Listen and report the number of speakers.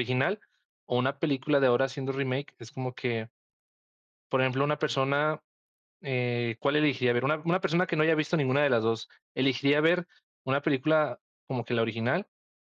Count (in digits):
1